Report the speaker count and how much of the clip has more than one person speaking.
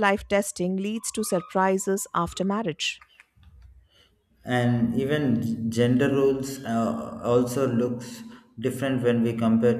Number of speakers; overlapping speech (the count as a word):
two, no overlap